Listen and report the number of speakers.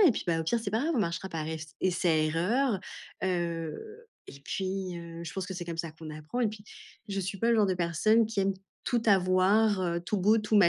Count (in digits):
1